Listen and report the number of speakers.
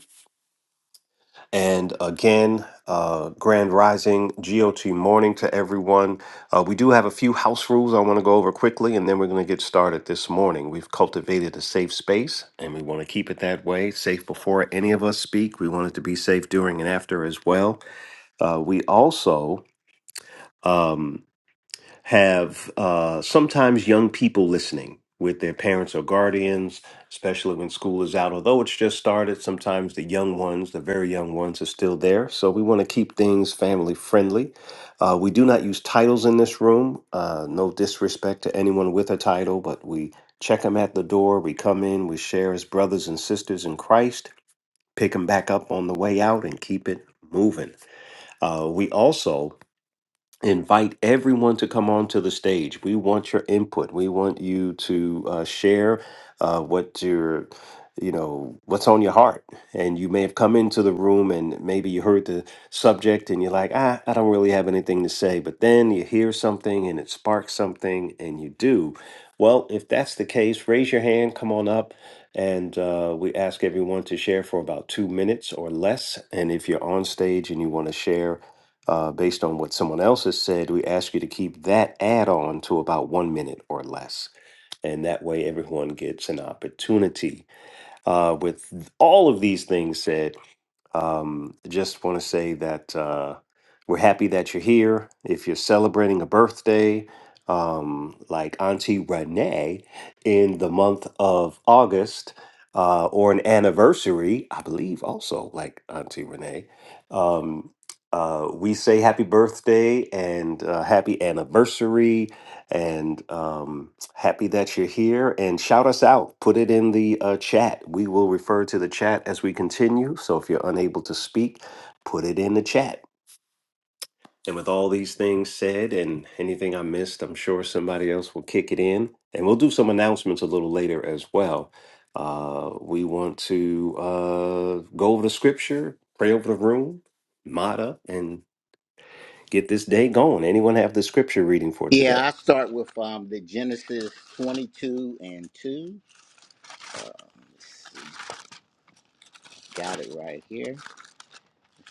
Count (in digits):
2